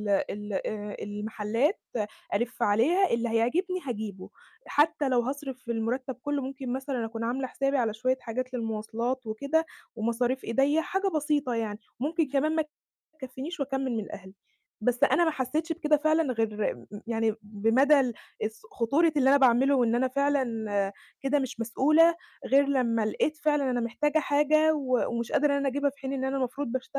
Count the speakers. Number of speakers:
1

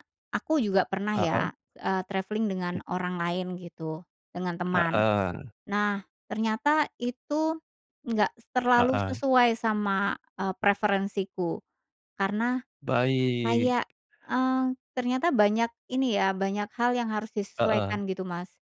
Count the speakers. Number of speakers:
2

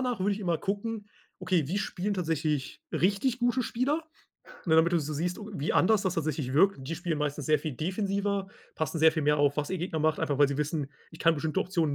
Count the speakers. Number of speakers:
1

